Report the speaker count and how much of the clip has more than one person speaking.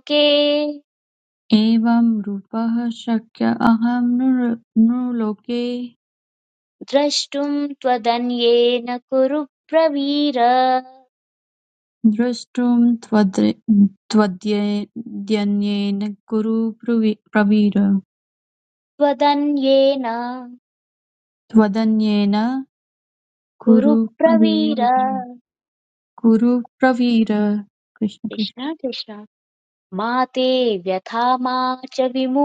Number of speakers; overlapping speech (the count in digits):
2, about 4%